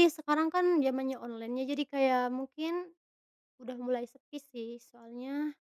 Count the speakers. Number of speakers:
1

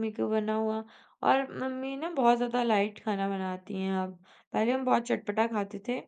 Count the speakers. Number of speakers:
1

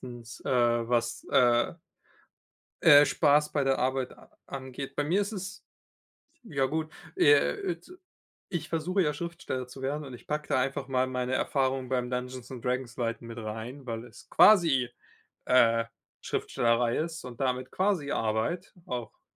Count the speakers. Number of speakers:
1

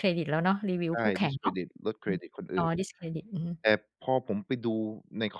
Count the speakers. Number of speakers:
2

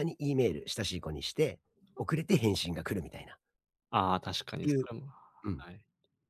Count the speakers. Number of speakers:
2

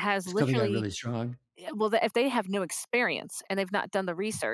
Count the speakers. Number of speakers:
2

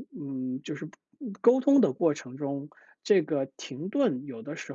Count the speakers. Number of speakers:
1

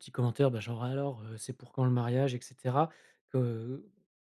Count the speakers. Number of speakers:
1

